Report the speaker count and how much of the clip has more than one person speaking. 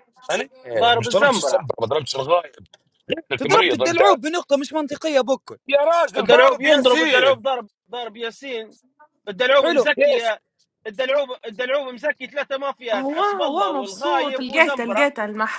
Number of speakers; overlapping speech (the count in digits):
4, about 32%